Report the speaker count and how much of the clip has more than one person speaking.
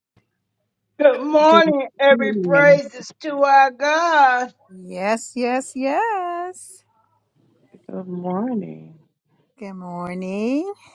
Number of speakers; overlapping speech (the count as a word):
three, about 9%